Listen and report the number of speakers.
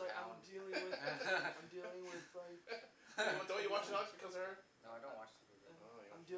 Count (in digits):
3